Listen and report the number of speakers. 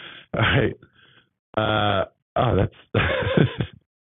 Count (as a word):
one